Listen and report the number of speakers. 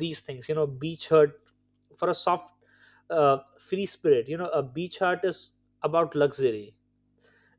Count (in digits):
1